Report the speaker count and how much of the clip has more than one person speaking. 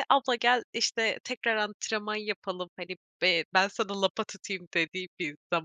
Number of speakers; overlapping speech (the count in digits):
1, no overlap